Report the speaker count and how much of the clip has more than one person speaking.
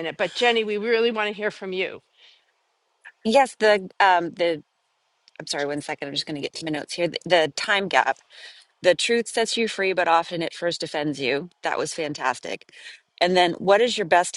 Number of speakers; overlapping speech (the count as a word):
two, no overlap